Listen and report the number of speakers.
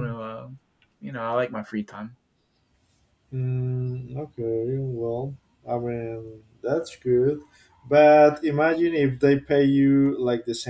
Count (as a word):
two